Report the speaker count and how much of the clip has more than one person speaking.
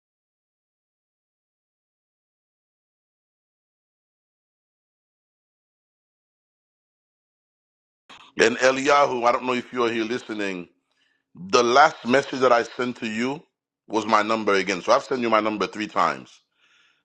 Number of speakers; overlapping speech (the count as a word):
one, no overlap